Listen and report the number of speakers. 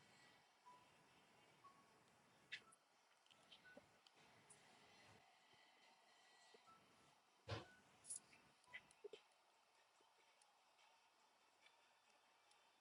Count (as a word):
zero